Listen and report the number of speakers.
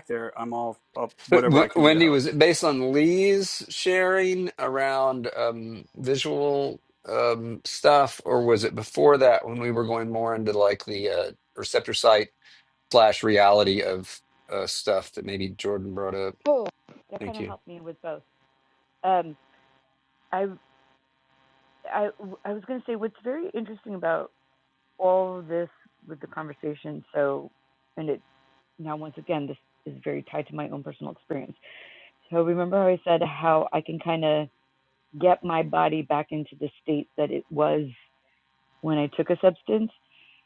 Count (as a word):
three